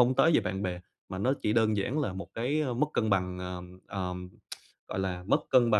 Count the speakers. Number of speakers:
1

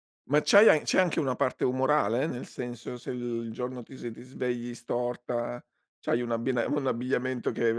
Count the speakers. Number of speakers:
1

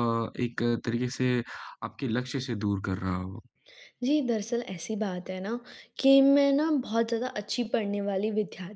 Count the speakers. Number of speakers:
2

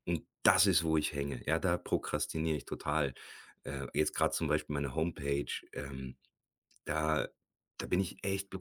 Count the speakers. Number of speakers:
1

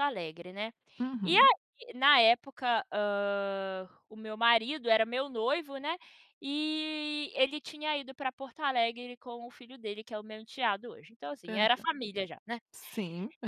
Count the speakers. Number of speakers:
2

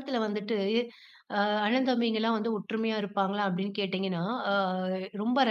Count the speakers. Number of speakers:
1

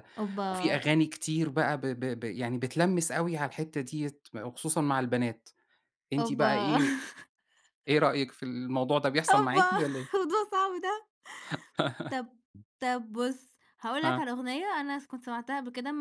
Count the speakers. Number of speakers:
2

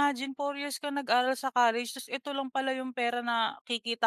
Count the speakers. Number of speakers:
1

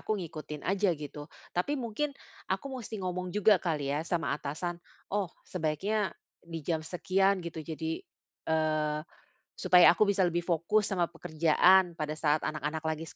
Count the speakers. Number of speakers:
1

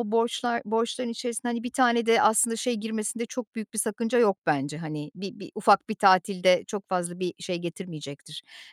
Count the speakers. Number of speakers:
1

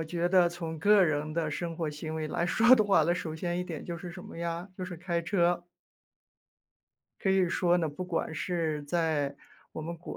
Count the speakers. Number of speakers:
1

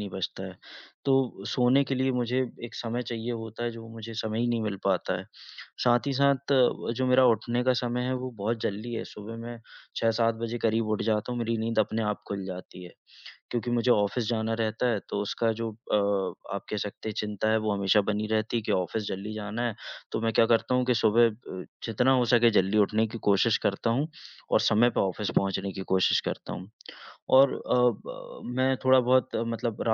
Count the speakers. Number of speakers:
1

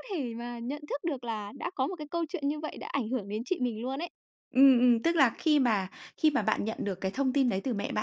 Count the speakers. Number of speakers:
2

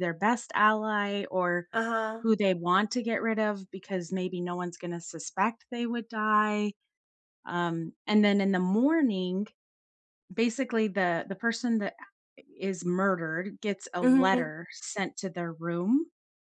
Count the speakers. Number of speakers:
2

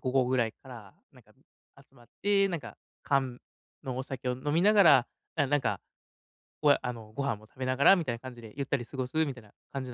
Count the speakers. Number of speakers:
1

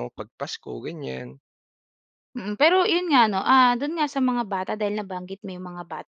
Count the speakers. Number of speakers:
2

